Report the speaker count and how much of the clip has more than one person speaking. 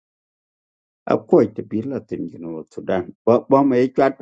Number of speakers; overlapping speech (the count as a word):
one, no overlap